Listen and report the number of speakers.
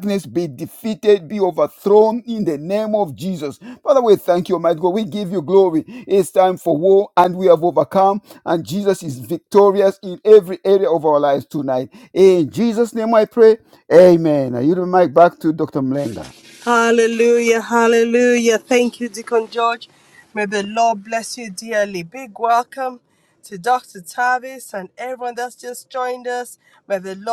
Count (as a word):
two